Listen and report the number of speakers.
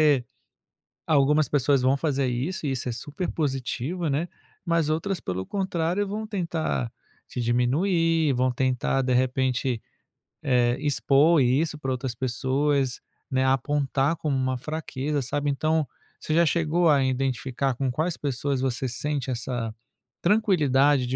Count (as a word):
one